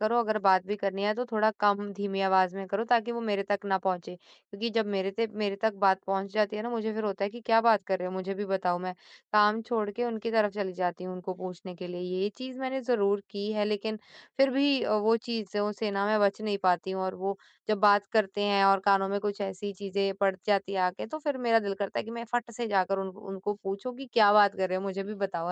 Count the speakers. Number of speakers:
1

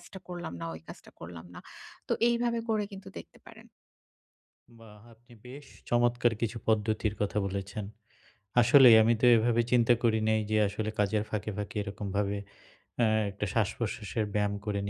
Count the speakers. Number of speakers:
2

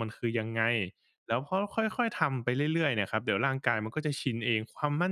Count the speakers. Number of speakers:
1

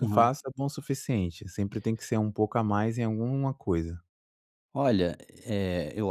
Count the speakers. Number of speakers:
2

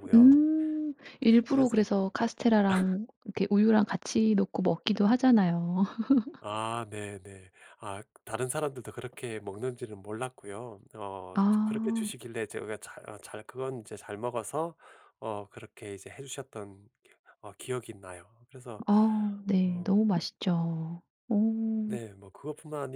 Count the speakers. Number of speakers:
2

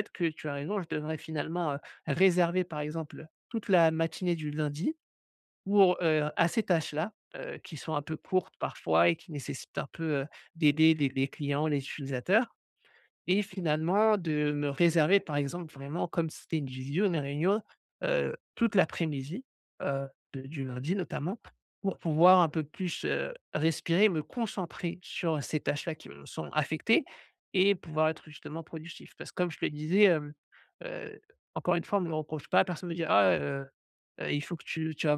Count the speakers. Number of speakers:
1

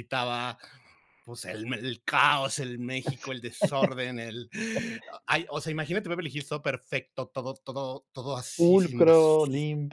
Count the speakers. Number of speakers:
2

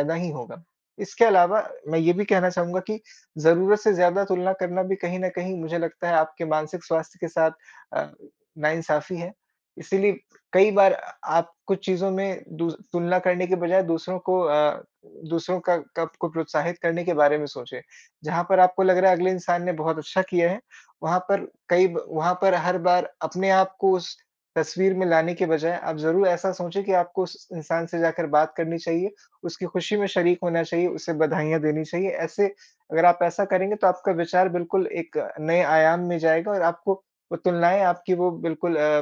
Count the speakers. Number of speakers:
1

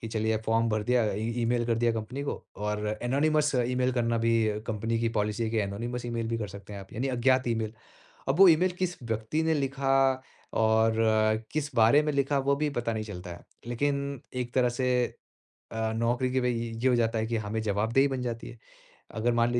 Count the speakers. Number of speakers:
1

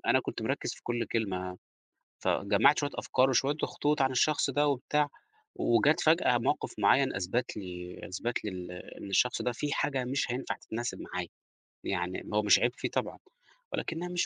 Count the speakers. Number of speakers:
1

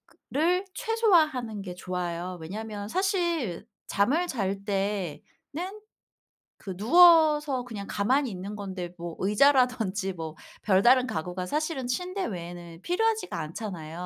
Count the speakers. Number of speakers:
1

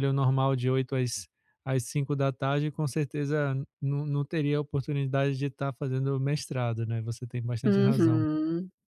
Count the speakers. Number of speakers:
2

